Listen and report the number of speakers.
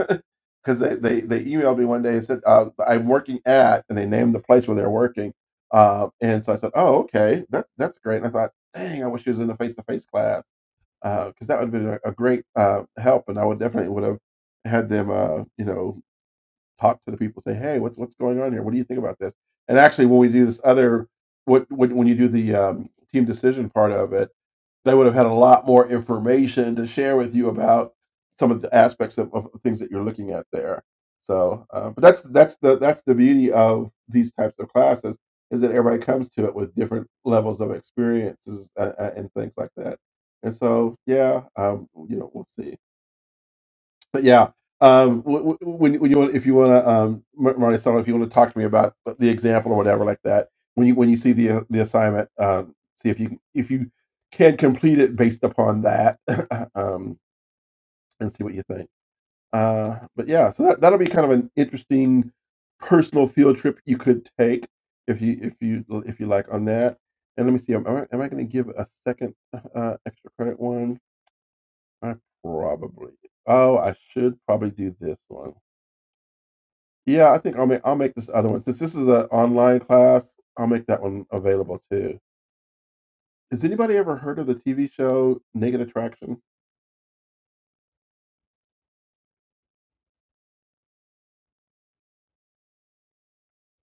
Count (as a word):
one